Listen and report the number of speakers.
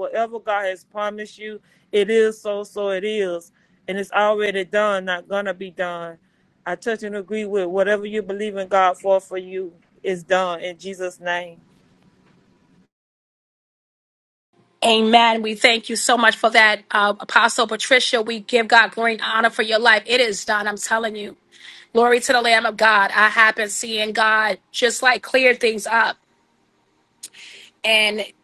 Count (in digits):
2